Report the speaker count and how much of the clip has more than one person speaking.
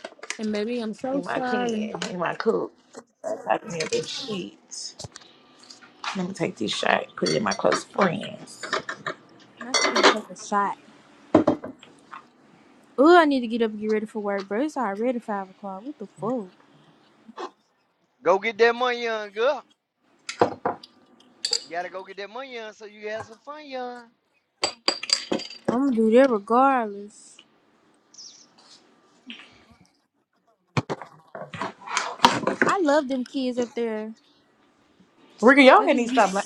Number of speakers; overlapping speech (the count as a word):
four, about 3%